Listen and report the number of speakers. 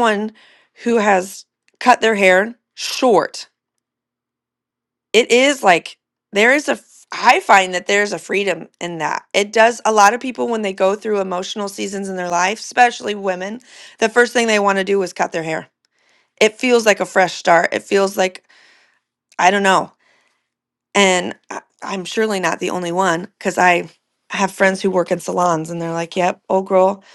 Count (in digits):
1